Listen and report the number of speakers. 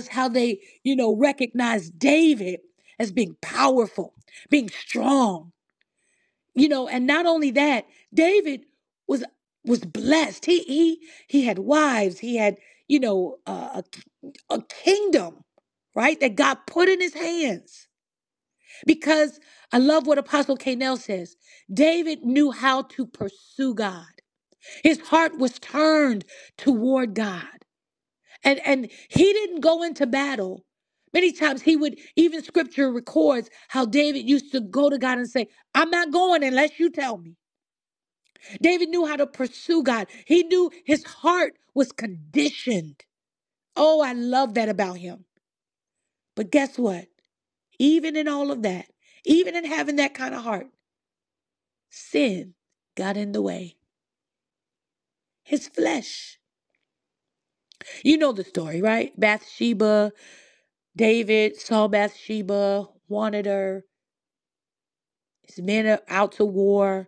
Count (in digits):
1